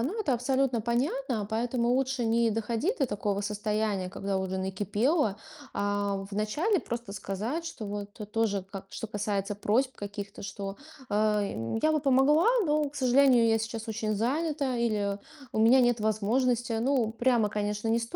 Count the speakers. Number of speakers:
one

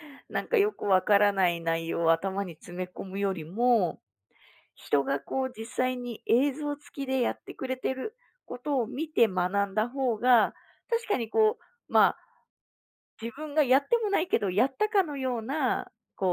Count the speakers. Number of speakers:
one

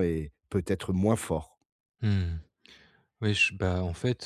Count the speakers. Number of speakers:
two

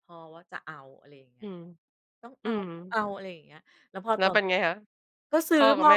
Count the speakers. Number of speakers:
two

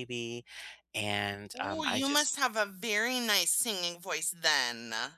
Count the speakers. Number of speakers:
two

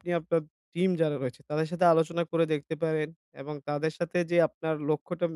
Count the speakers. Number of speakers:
one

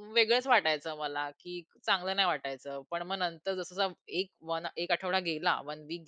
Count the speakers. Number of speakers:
one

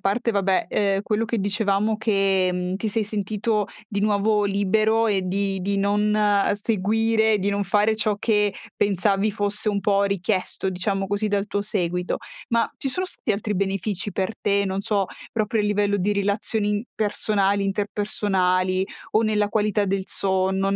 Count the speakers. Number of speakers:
one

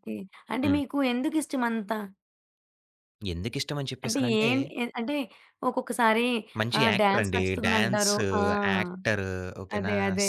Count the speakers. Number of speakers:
two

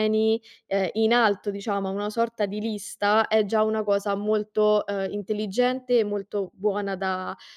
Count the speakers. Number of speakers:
one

